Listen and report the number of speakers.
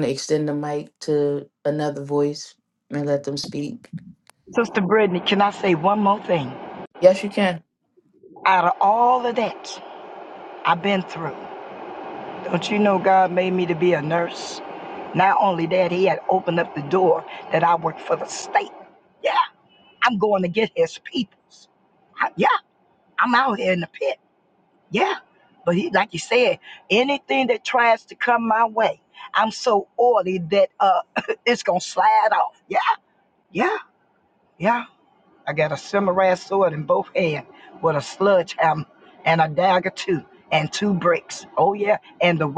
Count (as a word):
two